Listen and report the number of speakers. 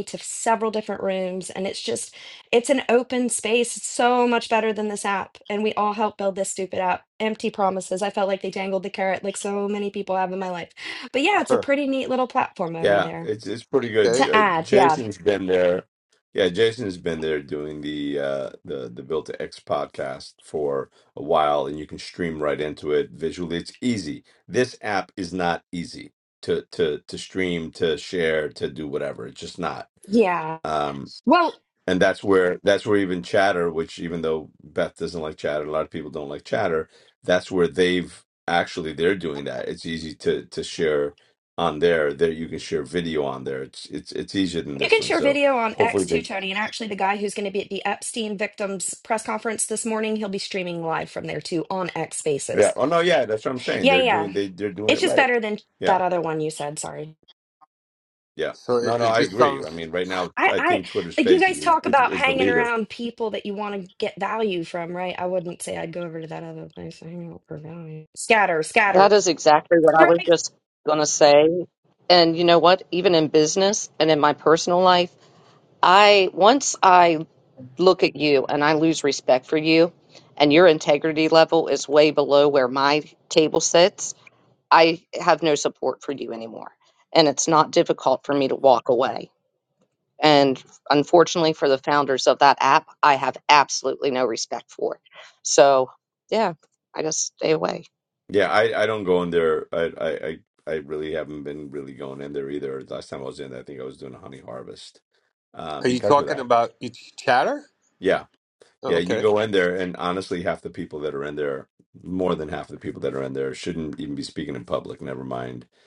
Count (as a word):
four